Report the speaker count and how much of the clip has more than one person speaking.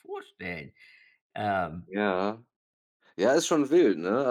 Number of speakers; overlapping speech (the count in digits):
2, no overlap